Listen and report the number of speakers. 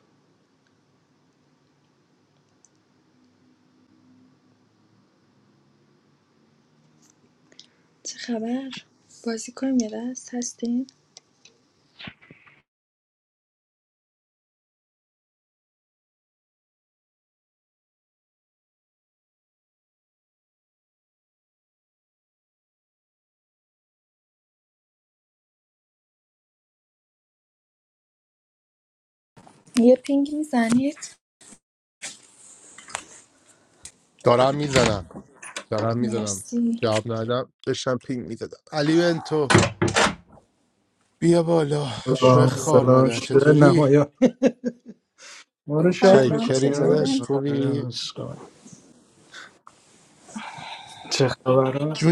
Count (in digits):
3